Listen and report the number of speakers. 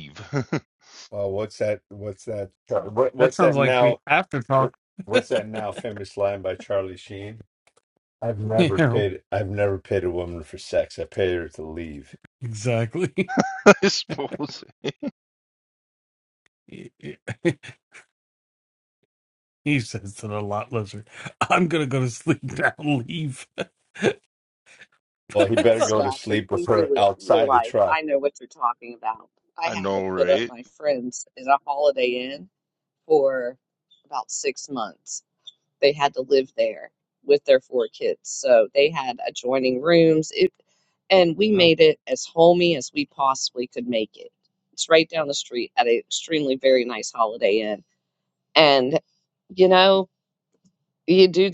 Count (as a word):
four